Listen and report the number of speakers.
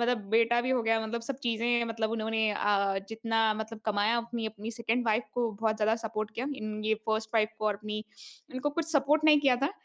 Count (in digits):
1